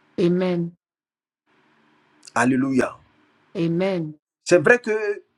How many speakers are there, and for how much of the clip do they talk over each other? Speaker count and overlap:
2, no overlap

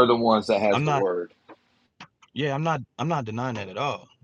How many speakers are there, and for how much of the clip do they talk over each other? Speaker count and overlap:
2, about 8%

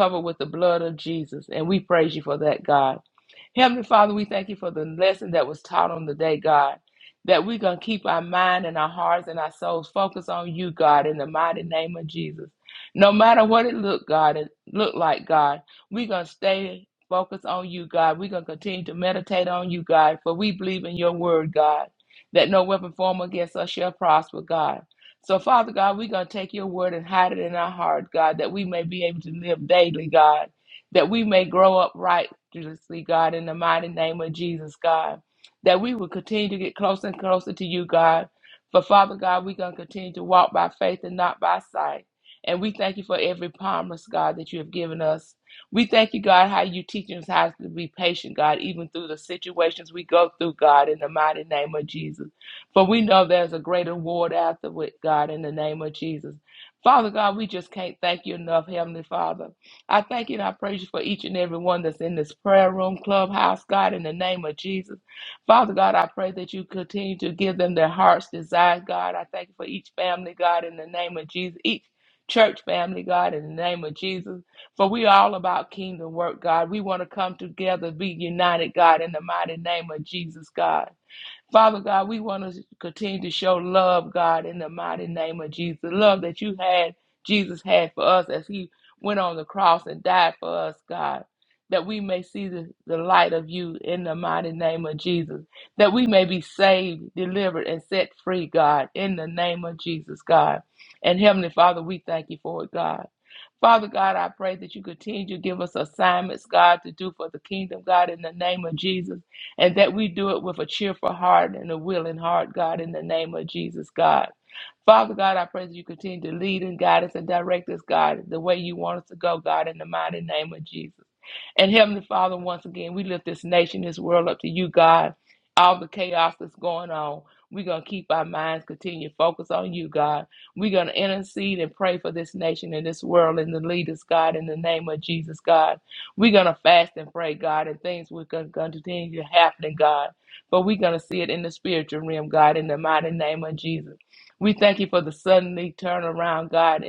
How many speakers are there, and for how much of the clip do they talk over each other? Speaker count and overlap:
1, no overlap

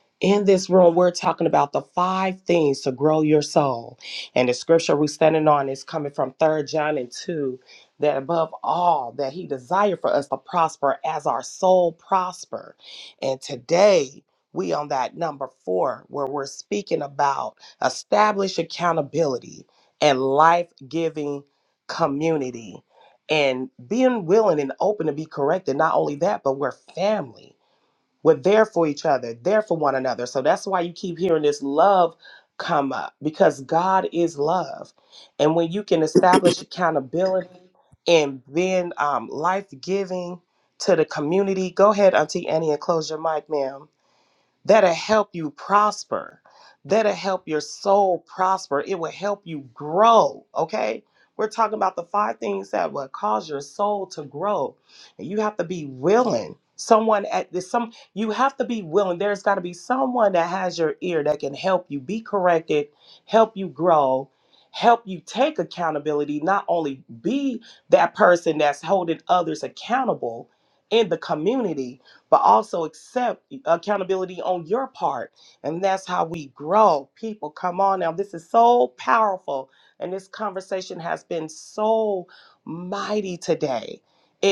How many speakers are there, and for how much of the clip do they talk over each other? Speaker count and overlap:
1, no overlap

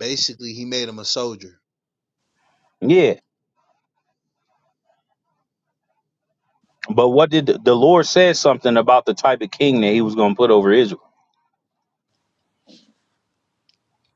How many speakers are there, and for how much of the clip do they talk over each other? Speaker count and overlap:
2, no overlap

